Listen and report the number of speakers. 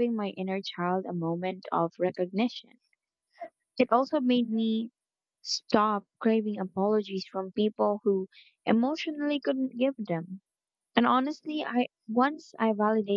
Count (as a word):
one